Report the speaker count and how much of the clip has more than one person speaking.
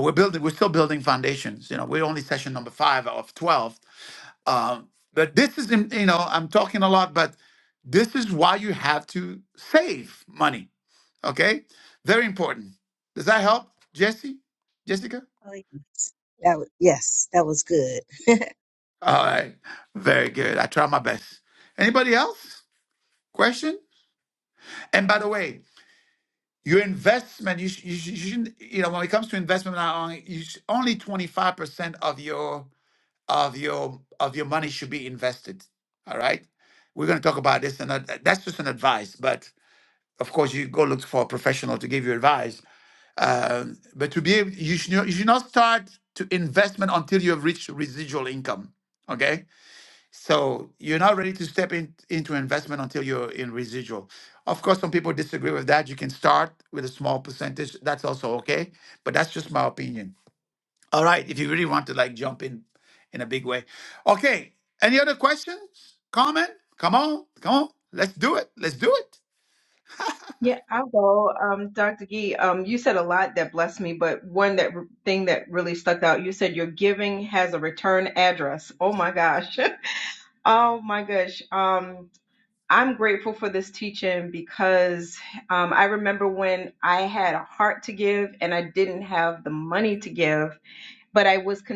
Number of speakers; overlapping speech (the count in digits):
3, no overlap